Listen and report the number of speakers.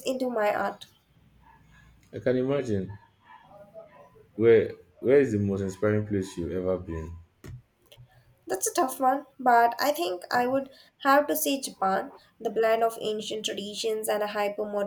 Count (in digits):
2